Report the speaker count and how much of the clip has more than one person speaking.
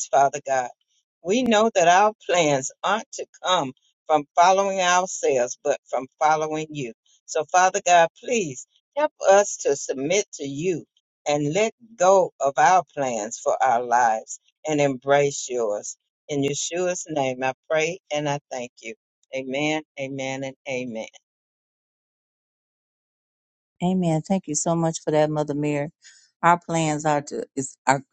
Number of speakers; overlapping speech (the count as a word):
two, no overlap